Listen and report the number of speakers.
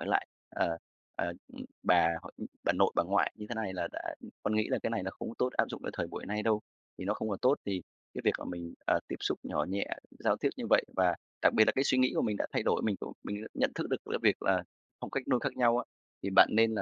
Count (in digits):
1